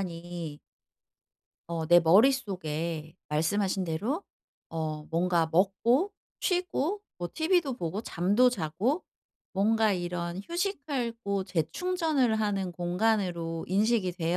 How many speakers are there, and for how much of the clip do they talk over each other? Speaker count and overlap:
1, no overlap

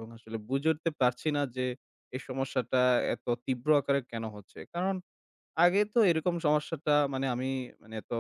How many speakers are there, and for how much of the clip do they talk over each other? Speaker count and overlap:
1, no overlap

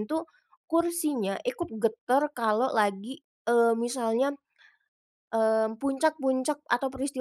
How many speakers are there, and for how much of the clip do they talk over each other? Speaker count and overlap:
1, no overlap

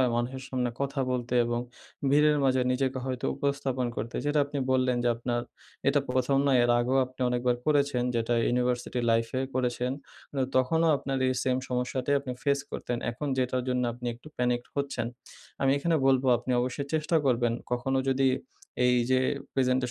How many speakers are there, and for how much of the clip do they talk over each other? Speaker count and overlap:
1, no overlap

